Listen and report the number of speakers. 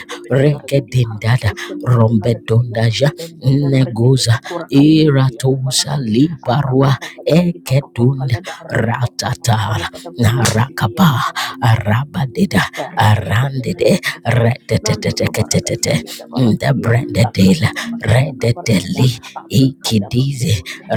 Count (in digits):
2